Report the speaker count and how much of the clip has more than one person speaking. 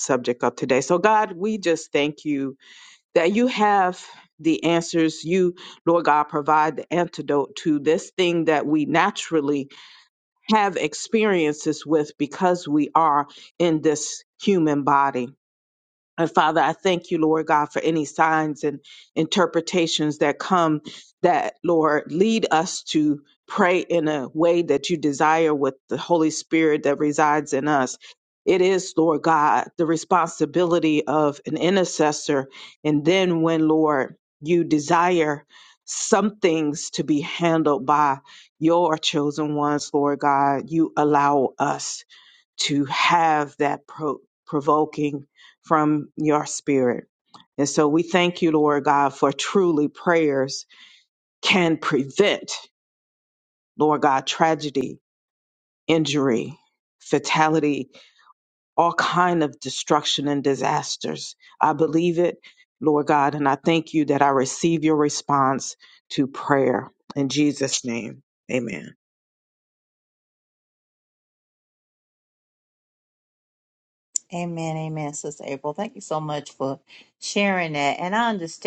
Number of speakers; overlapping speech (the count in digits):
2, no overlap